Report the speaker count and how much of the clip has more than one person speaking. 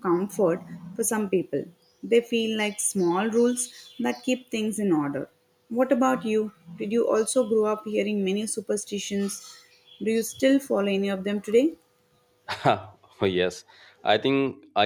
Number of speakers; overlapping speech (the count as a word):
two, no overlap